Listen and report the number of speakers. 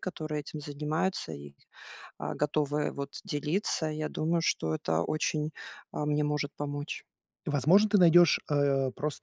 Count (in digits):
2